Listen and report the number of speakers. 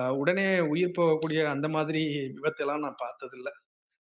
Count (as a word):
one